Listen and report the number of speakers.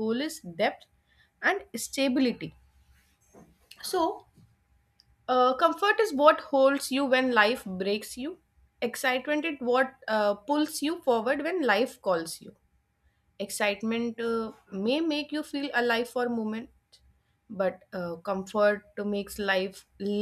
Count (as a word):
one